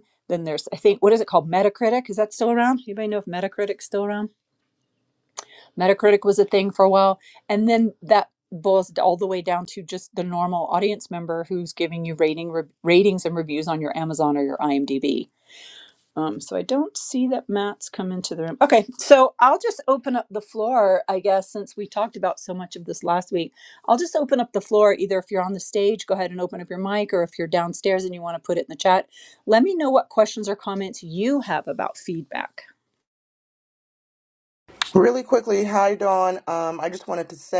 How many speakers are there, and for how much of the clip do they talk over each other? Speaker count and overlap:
2, no overlap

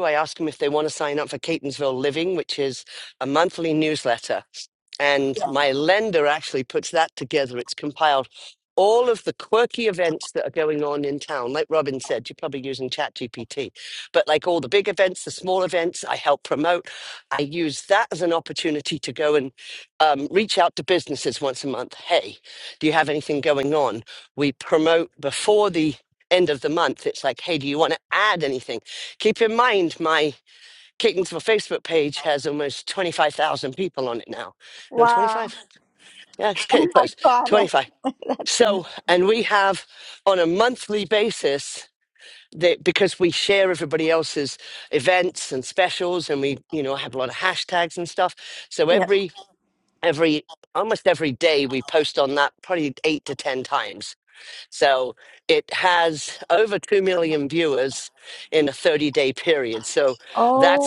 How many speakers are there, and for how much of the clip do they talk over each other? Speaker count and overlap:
2, about 4%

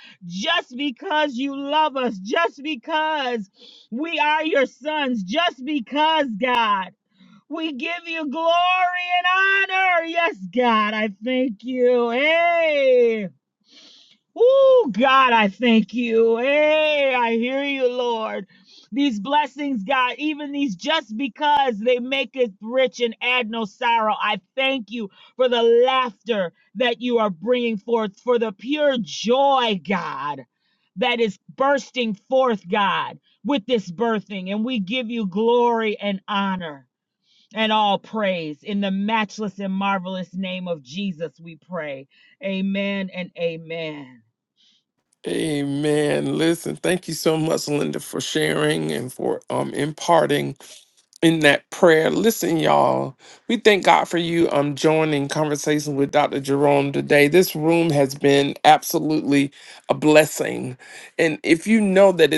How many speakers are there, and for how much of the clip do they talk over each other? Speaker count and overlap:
2, no overlap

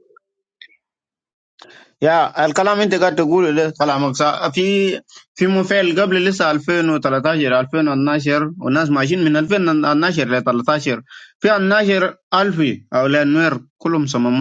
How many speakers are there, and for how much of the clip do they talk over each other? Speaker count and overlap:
1, no overlap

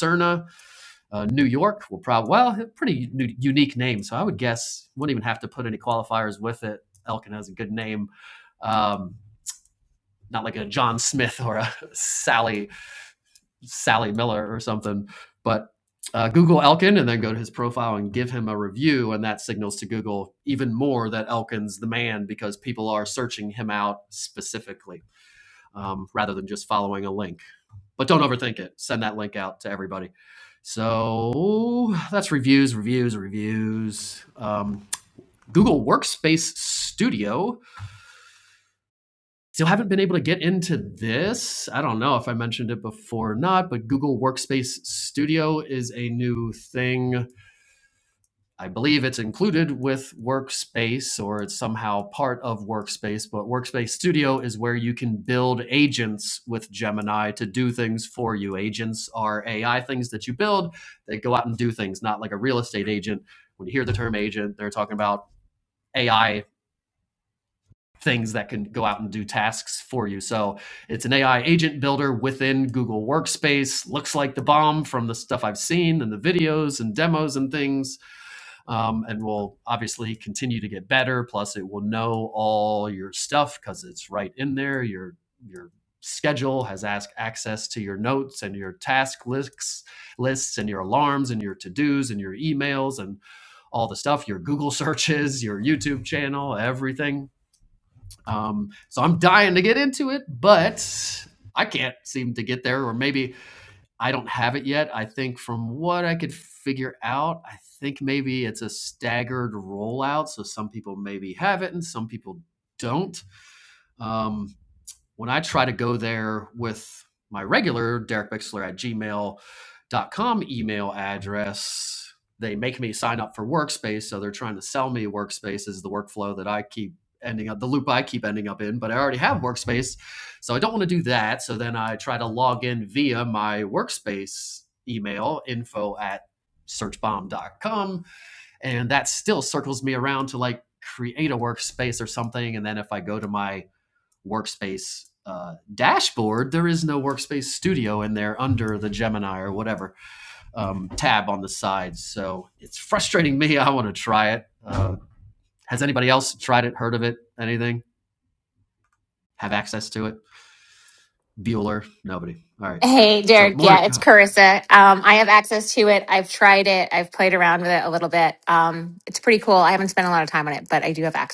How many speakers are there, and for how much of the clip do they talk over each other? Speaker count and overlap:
2, under 1%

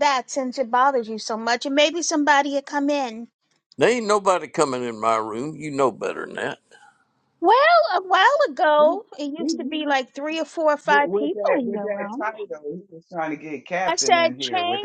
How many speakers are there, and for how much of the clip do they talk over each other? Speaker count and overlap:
3, about 21%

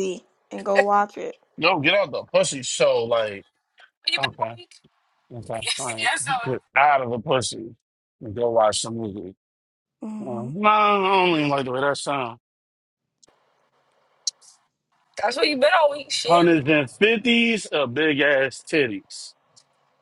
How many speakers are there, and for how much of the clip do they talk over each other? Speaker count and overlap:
3, about 6%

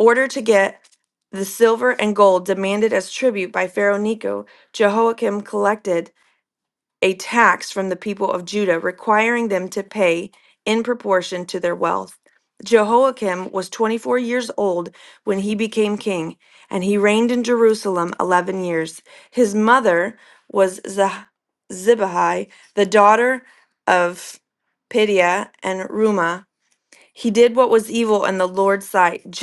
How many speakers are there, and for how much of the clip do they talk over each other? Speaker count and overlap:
1, no overlap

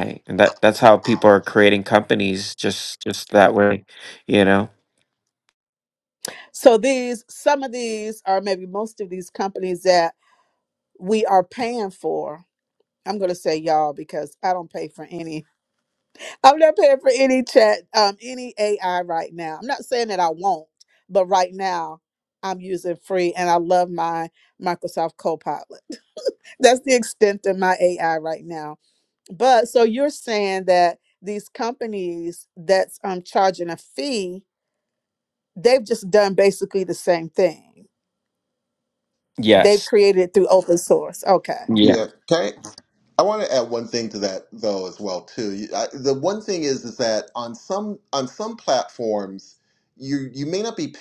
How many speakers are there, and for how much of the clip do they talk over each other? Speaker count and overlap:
3, under 1%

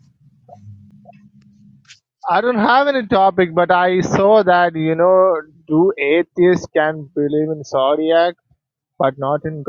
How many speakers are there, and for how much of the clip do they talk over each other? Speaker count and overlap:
1, no overlap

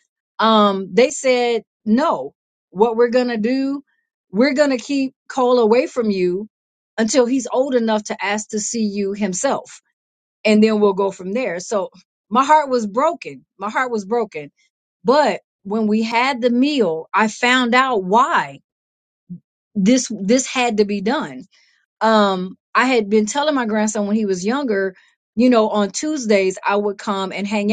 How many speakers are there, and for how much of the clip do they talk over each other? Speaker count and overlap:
1, no overlap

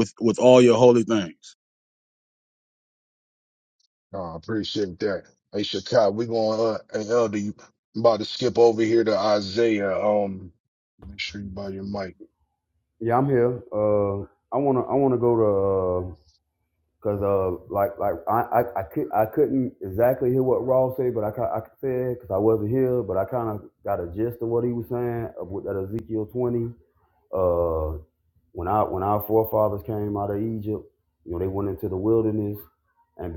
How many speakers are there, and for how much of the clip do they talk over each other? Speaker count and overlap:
3, no overlap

